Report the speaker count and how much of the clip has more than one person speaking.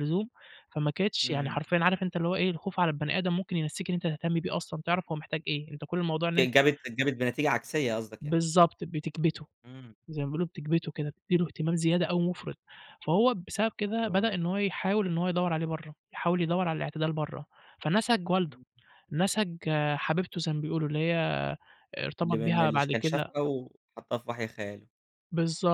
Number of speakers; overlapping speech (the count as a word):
two, about 7%